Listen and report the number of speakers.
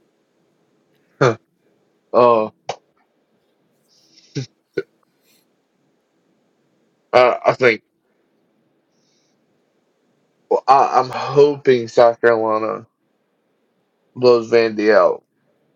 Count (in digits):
1